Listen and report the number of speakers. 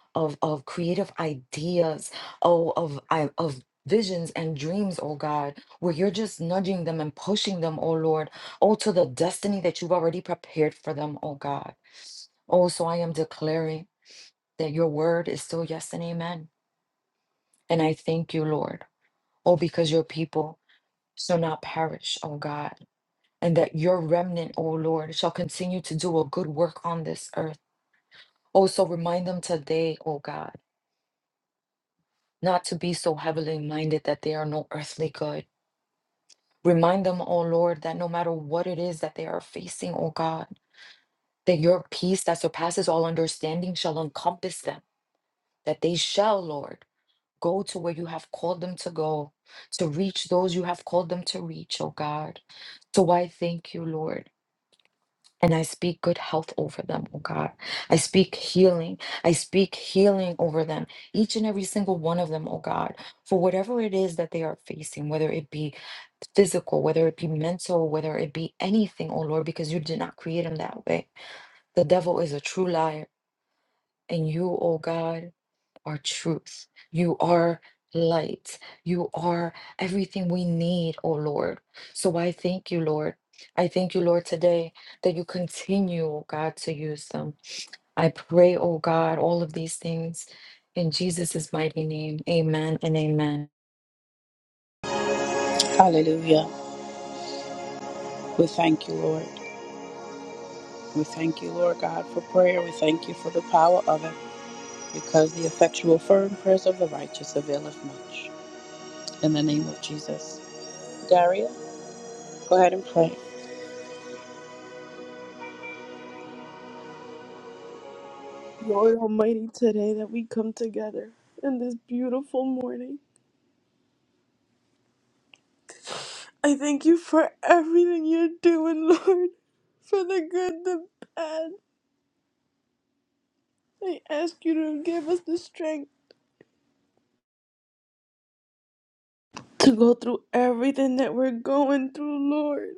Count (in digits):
3